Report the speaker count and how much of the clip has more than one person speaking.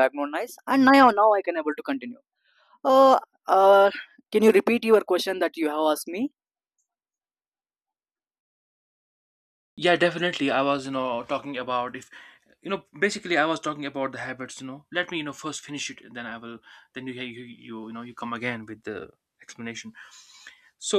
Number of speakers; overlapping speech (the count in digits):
2, no overlap